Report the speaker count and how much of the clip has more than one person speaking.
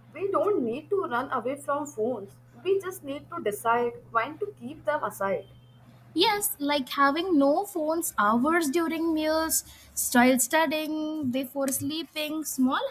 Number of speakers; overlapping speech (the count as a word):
two, no overlap